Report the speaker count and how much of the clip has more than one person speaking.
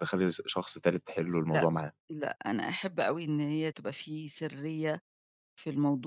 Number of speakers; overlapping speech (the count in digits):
2, about 2%